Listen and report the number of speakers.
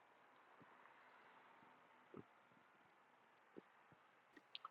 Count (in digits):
0